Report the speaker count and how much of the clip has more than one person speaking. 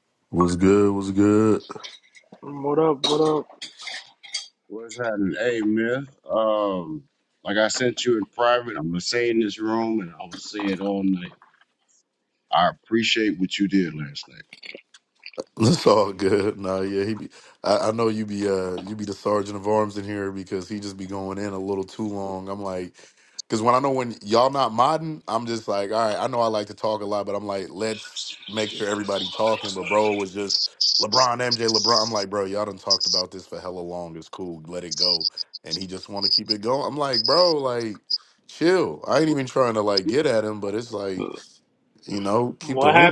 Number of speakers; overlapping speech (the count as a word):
three, about 1%